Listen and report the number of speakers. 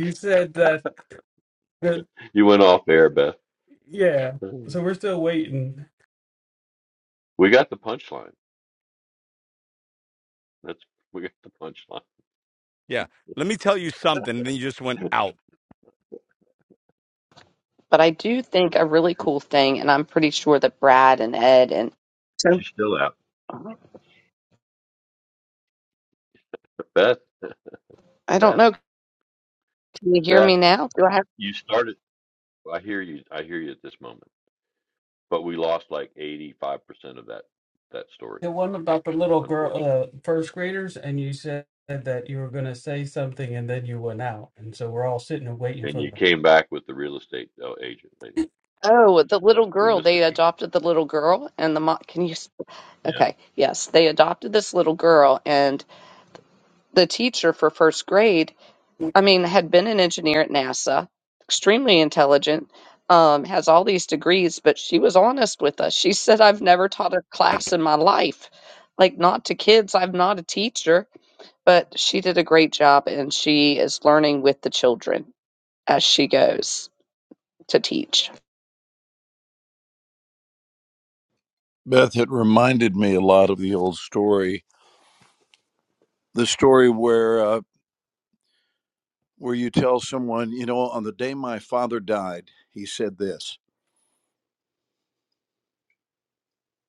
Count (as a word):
five